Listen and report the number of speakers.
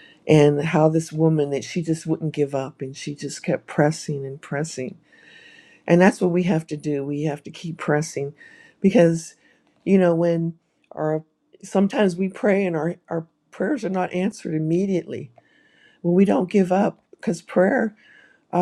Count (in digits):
1